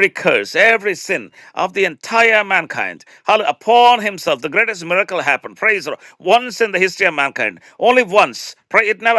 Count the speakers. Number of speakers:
one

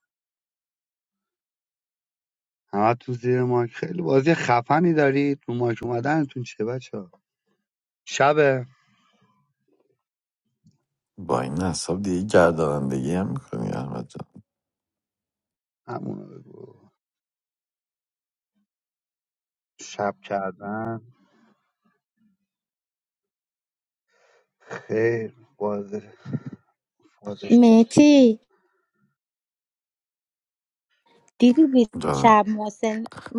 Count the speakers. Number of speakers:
three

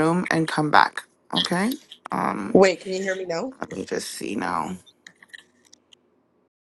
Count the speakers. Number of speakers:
two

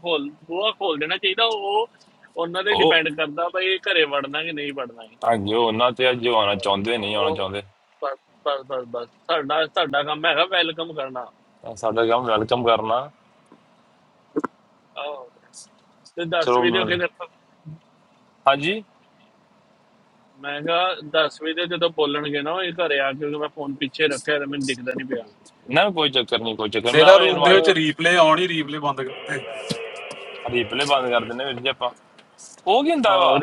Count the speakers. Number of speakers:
three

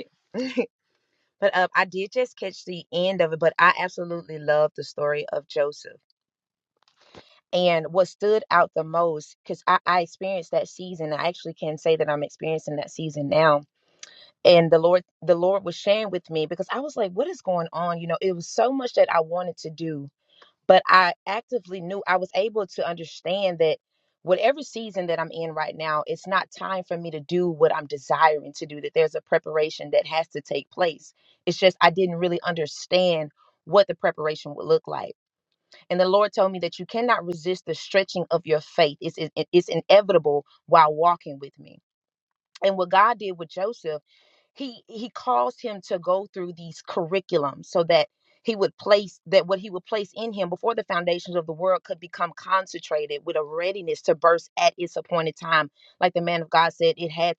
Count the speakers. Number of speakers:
one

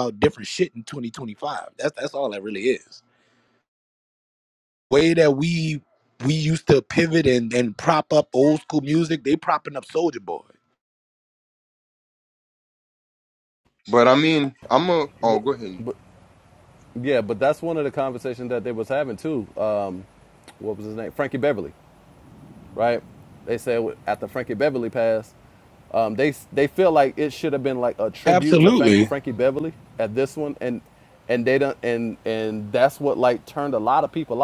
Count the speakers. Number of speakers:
three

